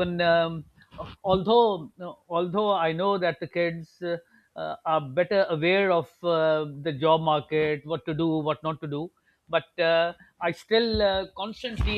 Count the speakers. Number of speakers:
1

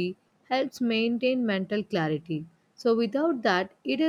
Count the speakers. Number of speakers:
1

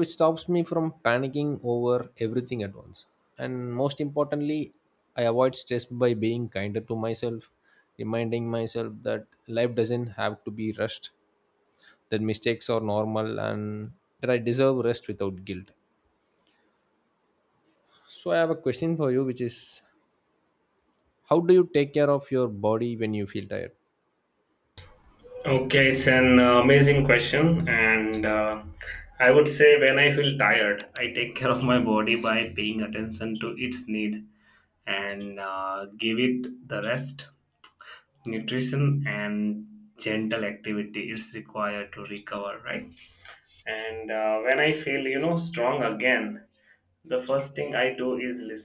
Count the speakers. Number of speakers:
2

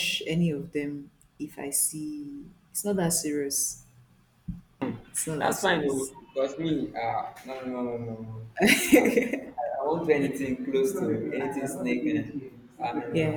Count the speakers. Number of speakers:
2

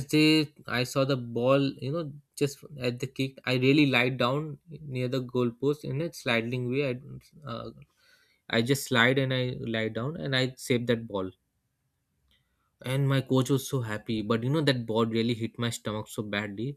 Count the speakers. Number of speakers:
1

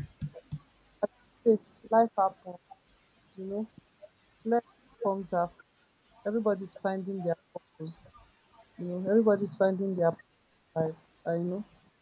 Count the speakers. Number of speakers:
1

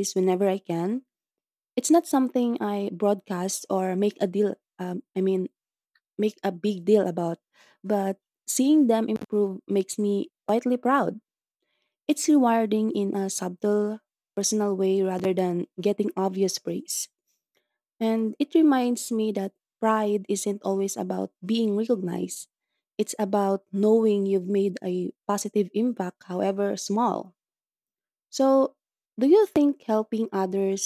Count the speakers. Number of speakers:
1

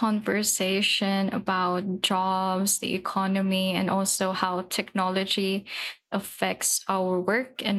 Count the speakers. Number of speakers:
1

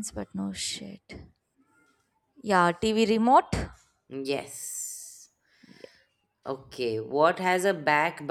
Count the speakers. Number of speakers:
2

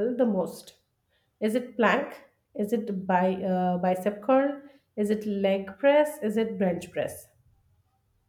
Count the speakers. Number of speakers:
1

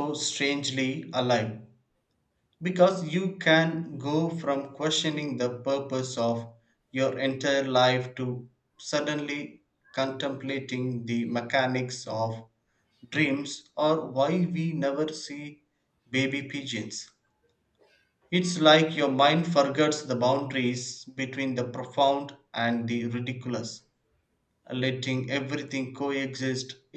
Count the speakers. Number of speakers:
1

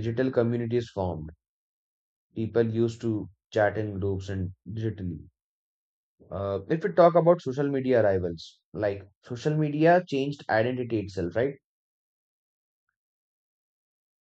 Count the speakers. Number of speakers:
1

